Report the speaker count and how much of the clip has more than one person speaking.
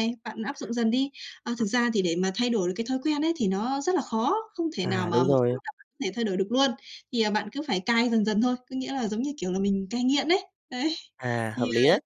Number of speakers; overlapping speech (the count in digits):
2, about 10%